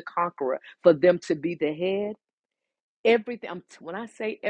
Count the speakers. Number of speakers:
1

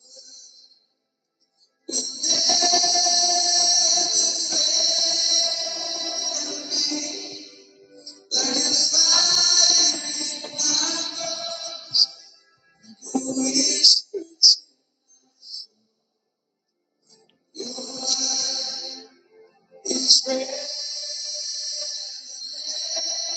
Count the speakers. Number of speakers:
0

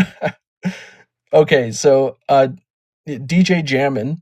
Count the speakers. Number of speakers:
1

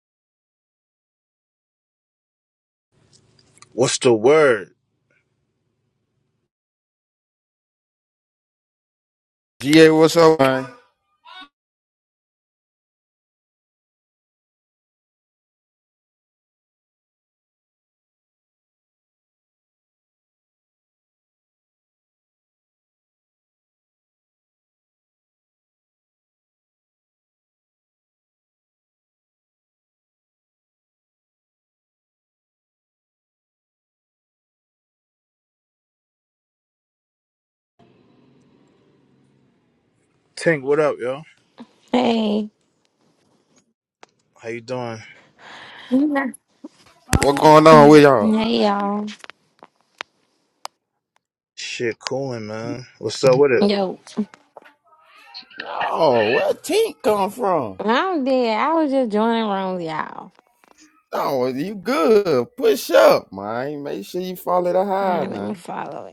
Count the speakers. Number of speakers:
3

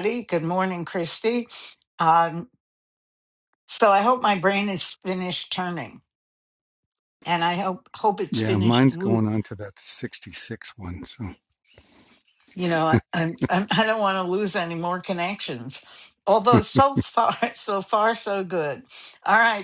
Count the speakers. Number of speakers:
2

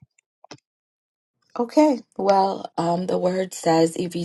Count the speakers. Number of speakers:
1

